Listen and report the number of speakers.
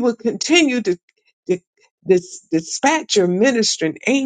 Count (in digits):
1